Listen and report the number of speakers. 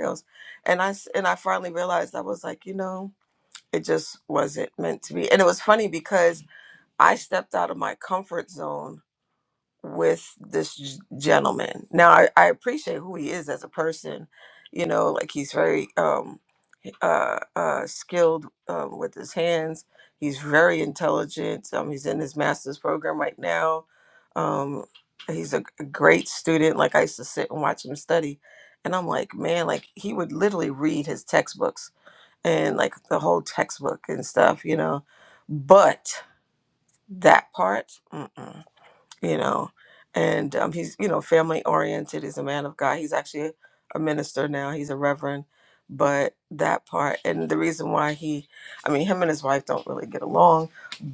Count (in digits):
1